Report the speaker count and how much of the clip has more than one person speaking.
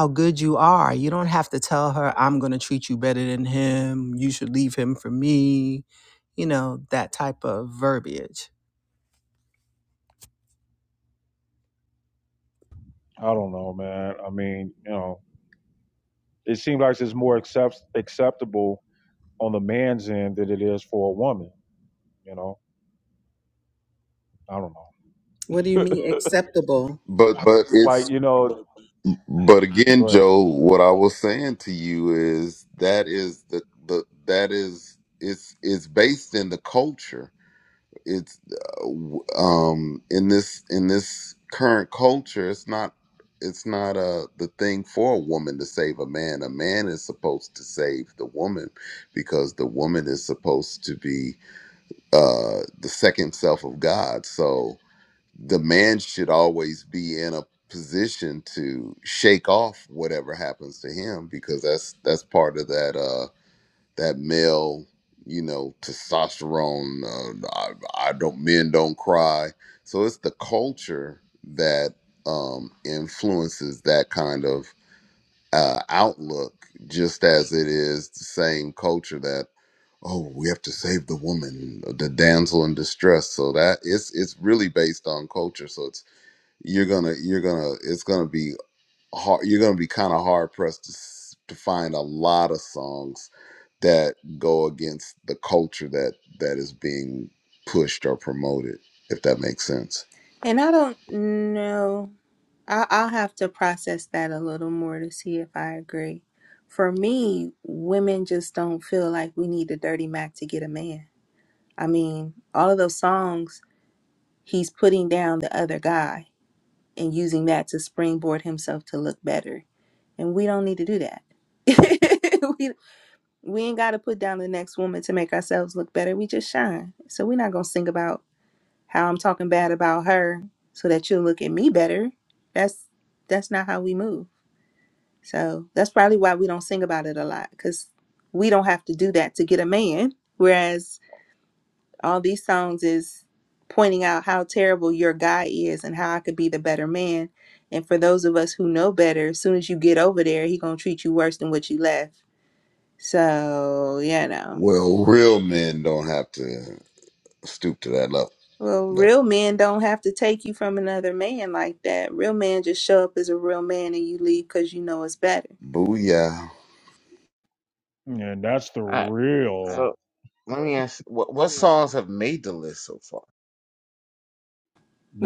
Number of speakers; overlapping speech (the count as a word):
five, about 1%